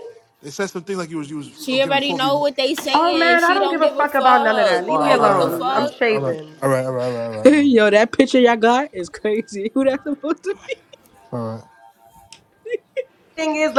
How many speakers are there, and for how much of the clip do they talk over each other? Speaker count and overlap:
4, about 32%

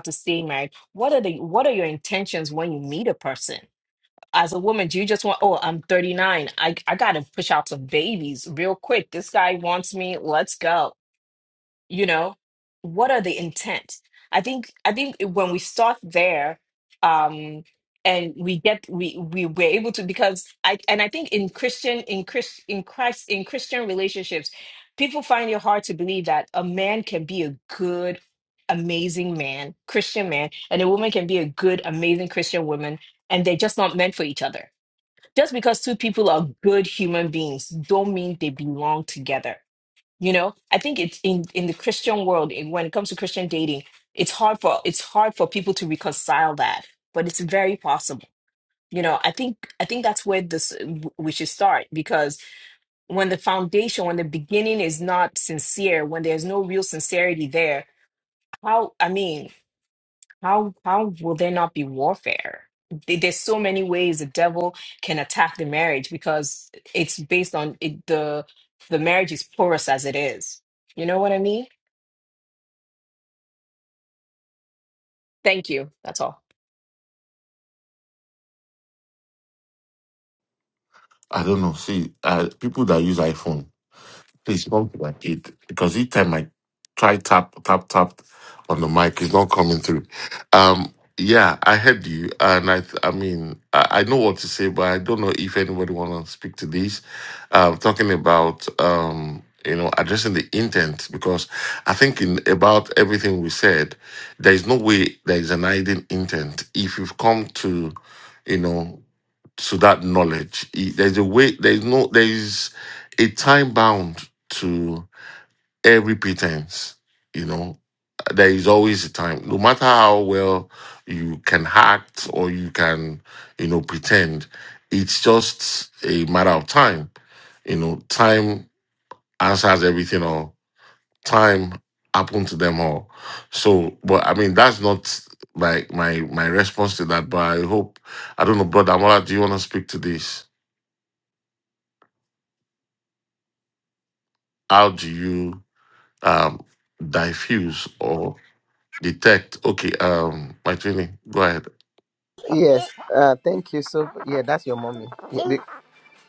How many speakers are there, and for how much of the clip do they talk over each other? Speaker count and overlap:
3, no overlap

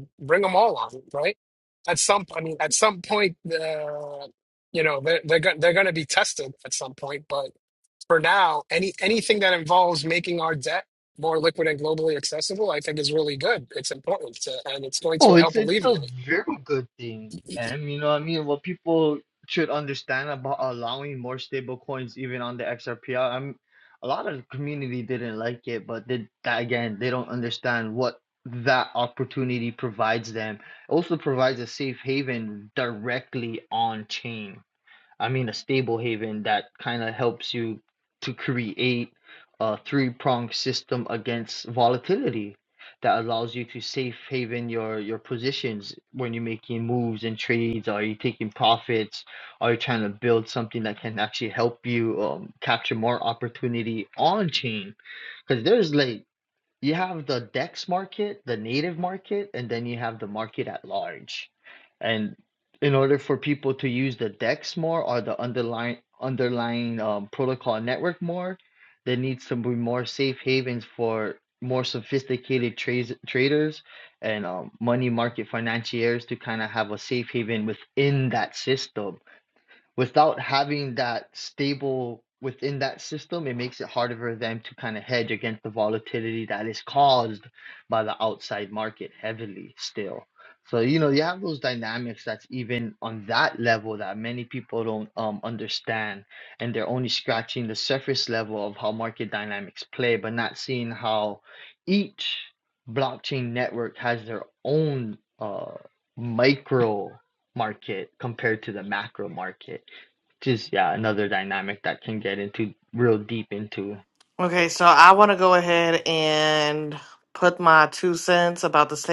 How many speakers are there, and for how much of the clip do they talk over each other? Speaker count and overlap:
3, about 1%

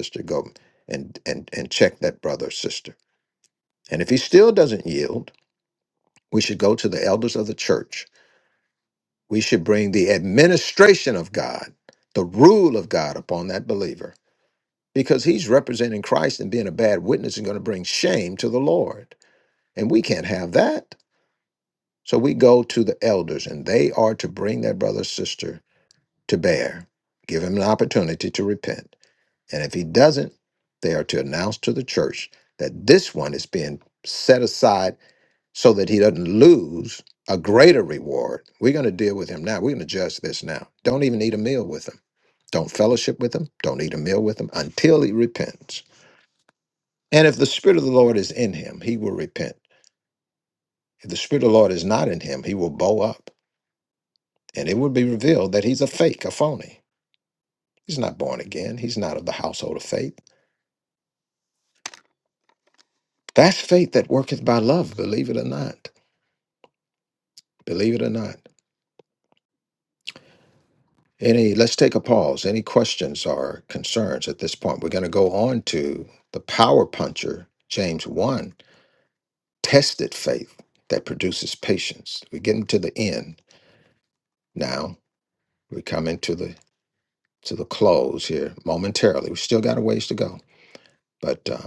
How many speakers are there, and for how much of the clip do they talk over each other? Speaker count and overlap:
1, no overlap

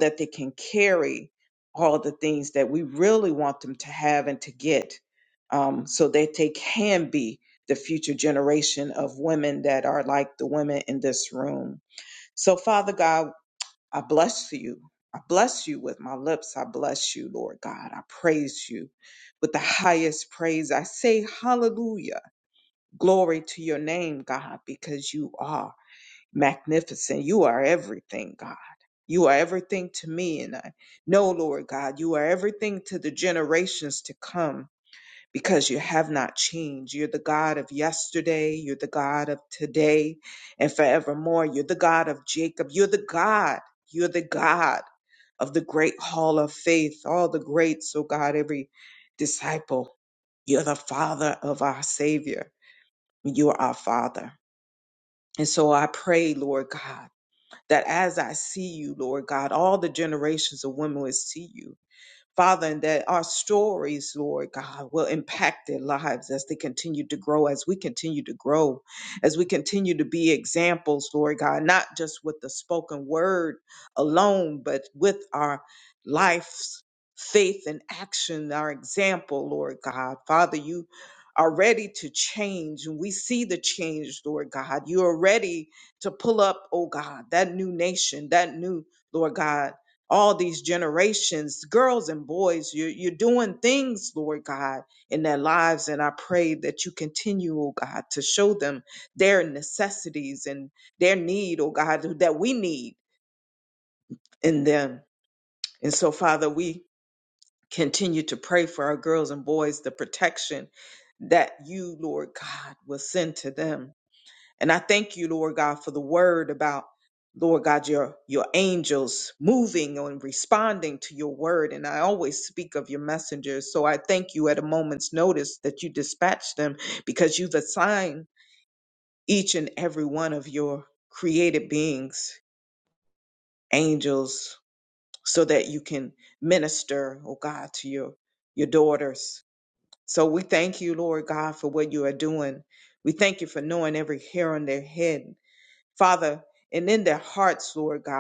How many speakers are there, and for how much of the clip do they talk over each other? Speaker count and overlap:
1, no overlap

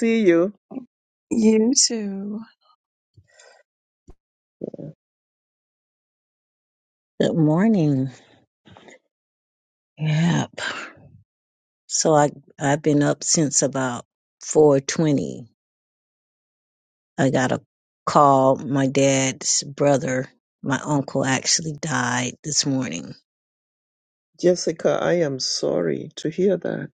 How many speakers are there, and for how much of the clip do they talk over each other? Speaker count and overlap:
3, no overlap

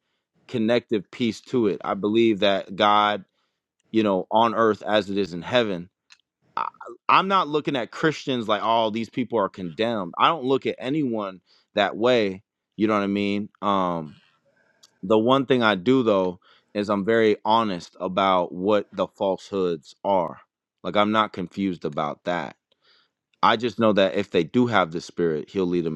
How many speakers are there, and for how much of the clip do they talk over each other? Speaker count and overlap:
1, no overlap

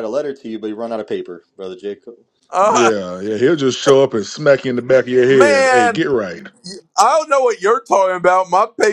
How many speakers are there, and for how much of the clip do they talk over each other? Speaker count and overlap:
3, about 10%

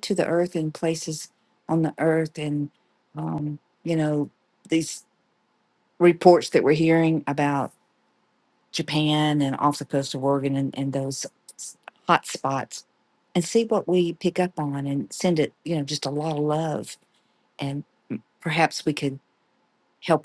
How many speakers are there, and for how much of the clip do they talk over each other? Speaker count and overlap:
1, no overlap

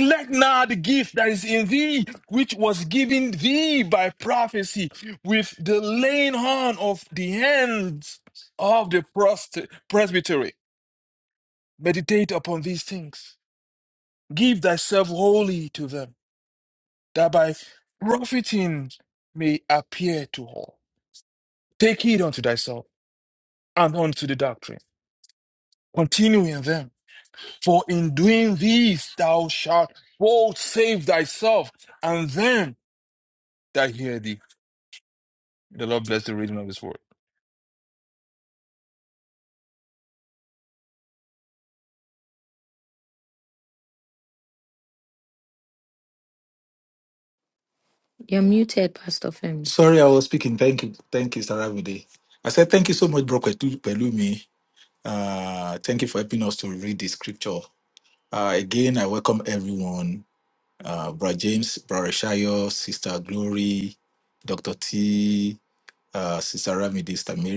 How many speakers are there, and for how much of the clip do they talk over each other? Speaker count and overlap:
3, under 1%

